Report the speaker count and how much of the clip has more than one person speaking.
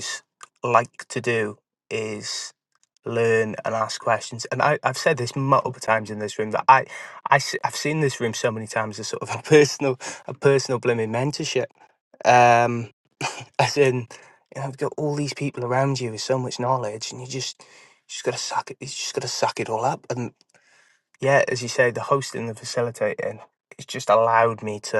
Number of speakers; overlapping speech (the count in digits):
1, no overlap